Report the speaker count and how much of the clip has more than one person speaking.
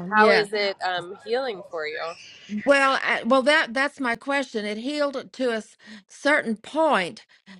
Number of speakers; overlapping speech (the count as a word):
two, about 5%